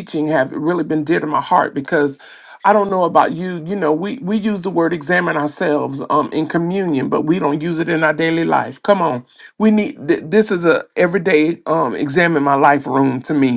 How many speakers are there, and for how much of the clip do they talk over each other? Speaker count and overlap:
one, no overlap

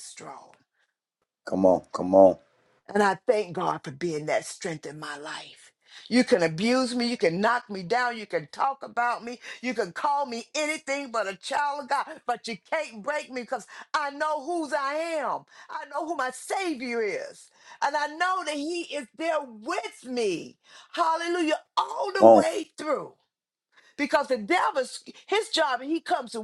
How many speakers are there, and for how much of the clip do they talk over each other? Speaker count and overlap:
two, about 1%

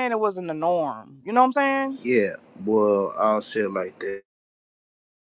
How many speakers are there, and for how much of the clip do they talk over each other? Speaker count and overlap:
two, no overlap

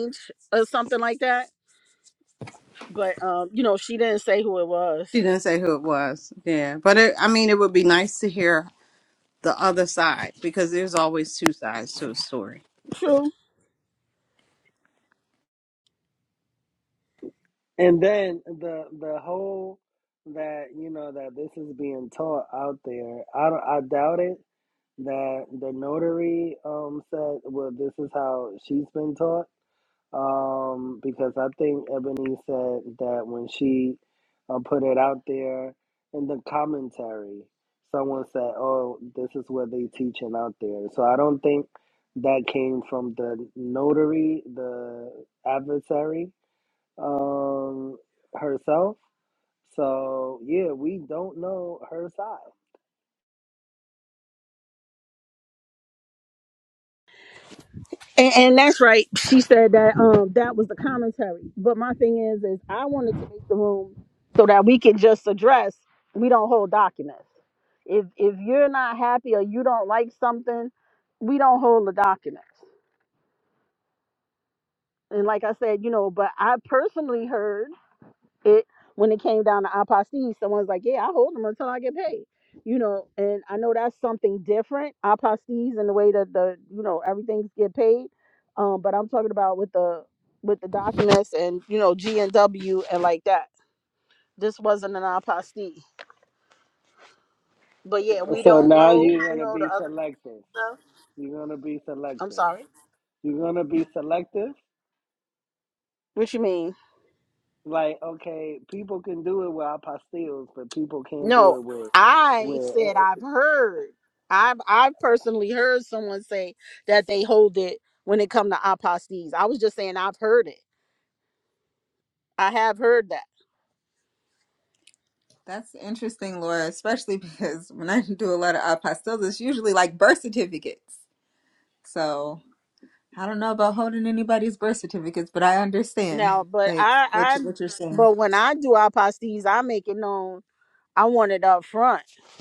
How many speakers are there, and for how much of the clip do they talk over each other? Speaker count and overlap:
four, about 3%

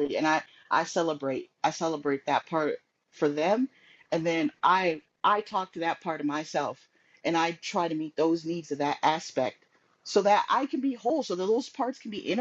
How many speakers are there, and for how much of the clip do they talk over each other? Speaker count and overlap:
one, no overlap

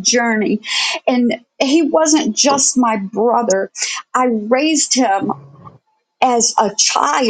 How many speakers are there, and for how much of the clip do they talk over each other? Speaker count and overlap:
one, no overlap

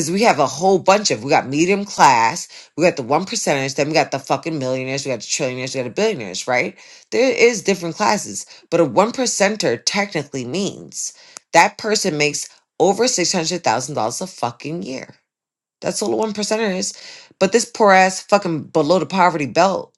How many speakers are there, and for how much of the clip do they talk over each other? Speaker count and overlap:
one, no overlap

